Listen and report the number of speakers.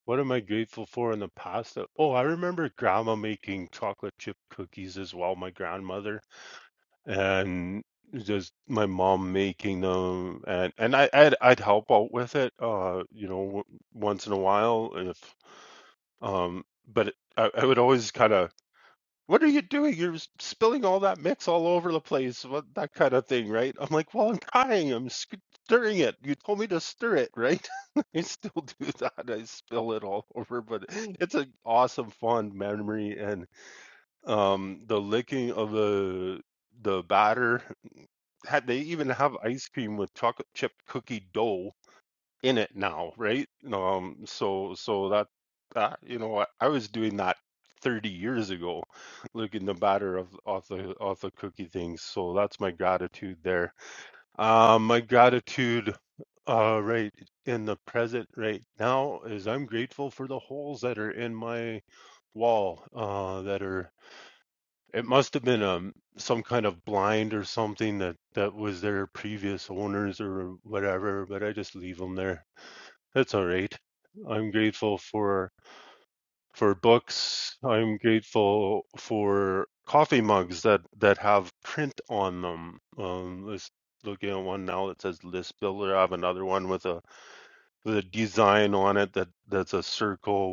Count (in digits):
1